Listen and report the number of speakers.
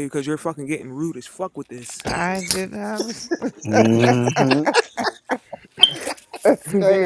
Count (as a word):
three